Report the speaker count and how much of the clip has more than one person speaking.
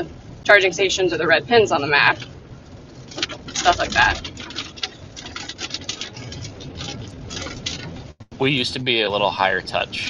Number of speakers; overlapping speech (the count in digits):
2, no overlap